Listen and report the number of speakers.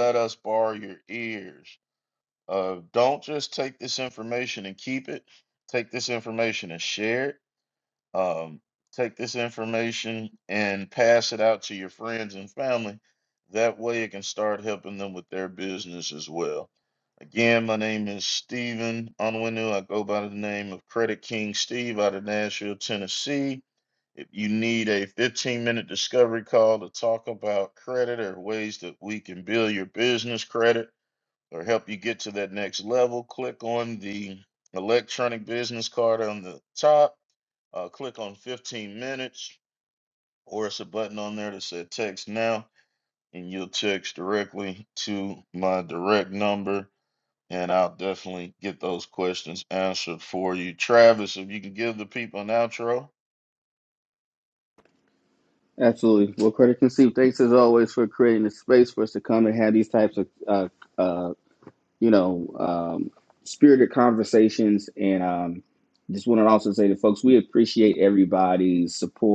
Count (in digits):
2